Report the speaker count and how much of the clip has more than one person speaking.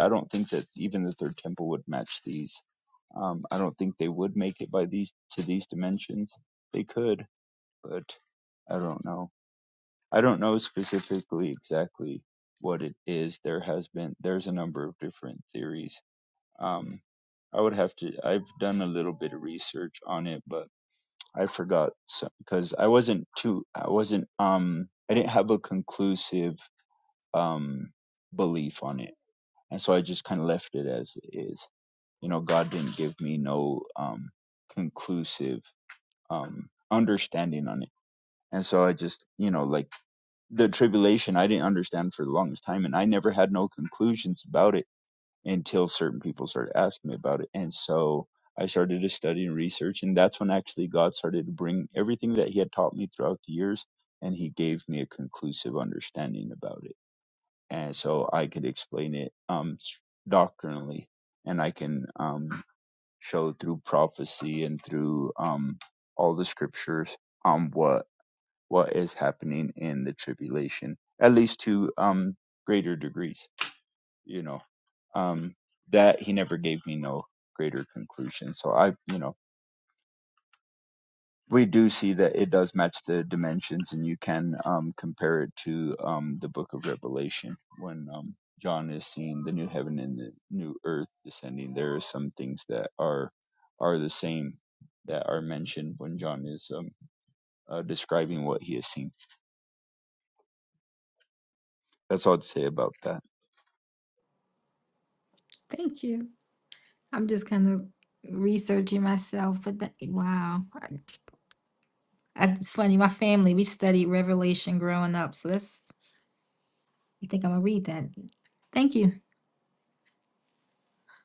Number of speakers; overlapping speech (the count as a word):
two, no overlap